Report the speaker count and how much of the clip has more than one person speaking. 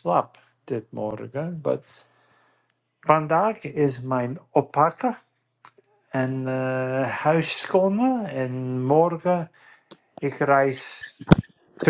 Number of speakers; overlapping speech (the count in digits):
1, no overlap